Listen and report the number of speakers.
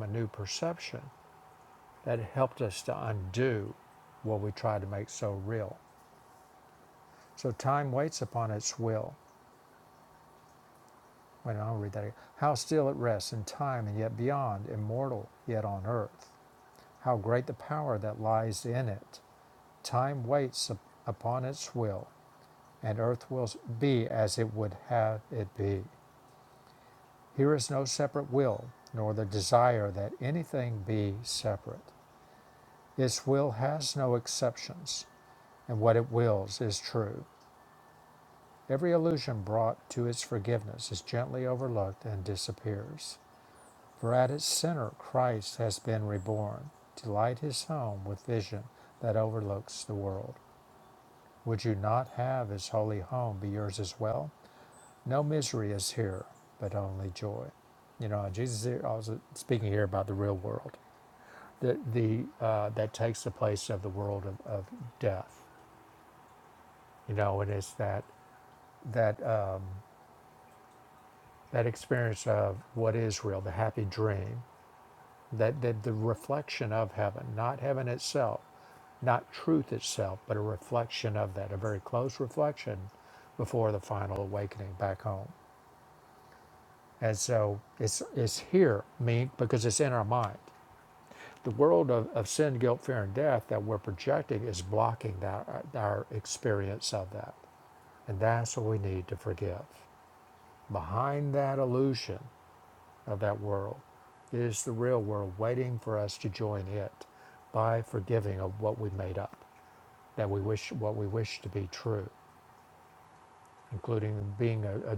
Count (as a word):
one